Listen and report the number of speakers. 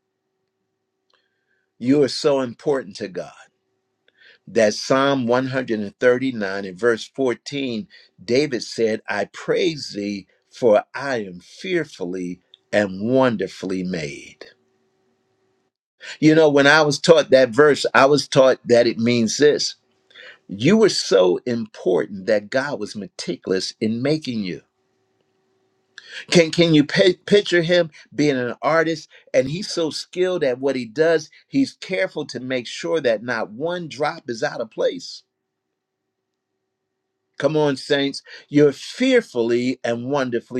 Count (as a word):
one